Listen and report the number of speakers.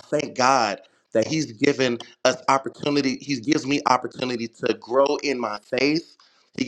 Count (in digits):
1